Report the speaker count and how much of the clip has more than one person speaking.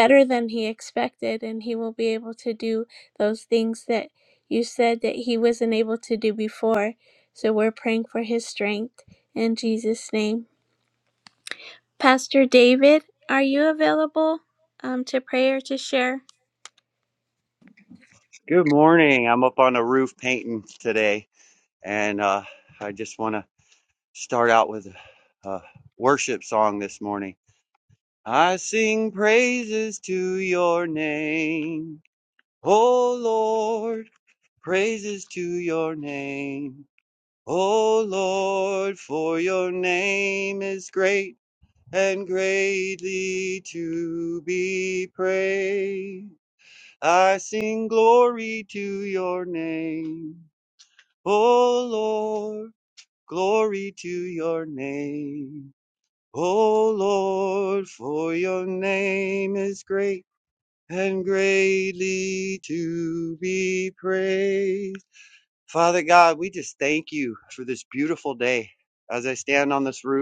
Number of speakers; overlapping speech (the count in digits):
2, no overlap